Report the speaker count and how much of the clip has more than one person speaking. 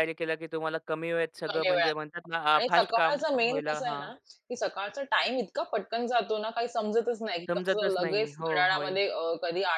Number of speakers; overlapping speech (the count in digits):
2, about 36%